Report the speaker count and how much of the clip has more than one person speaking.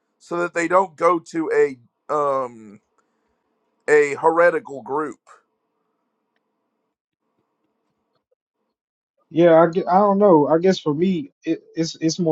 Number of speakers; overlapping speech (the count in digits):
2, no overlap